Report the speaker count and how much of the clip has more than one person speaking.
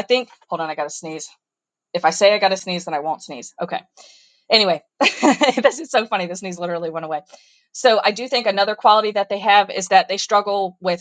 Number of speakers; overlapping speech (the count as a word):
one, no overlap